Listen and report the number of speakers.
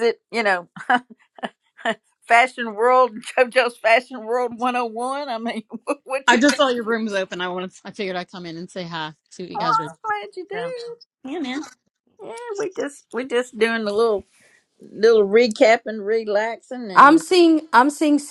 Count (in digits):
3